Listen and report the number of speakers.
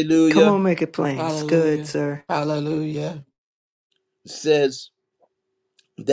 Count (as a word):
three